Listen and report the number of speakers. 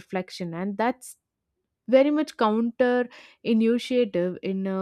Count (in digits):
1